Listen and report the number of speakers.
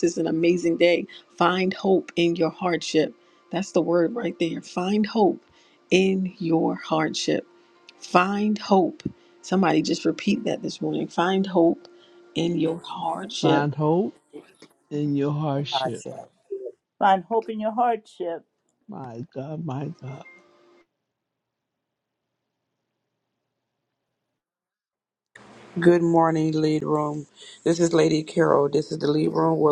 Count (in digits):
4